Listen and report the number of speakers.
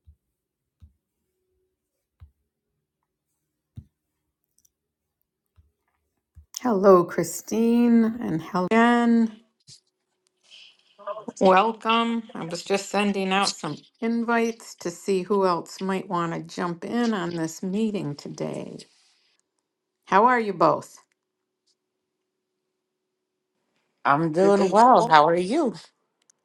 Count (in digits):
2